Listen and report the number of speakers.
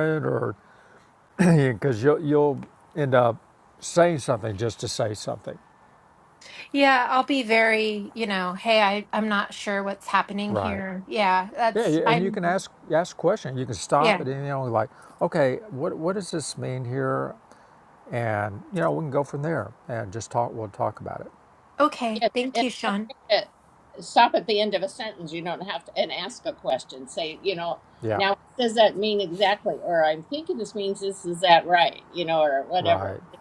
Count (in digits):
3